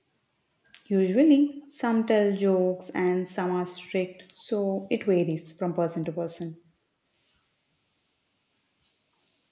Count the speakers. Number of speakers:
1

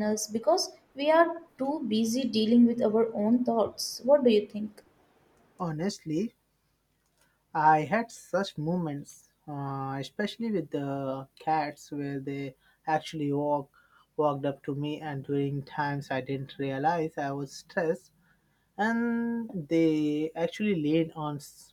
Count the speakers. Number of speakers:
2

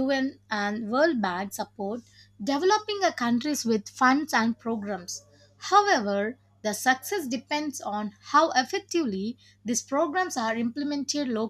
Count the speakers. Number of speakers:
1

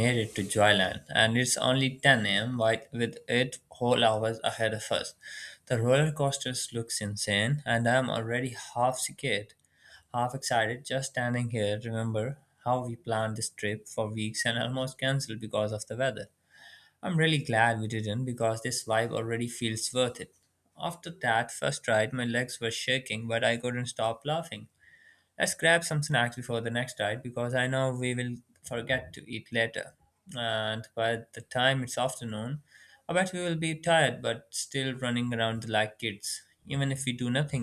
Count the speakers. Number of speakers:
1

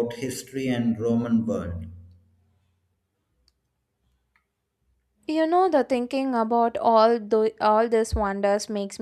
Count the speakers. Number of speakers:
2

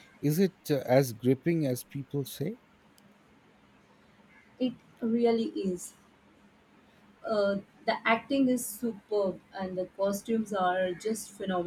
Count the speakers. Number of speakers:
2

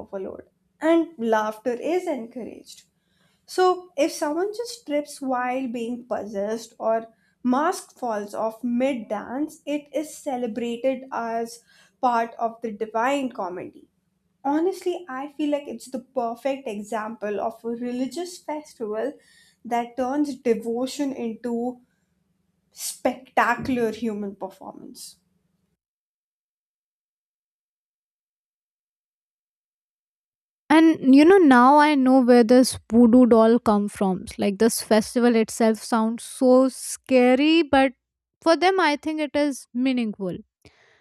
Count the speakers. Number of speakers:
2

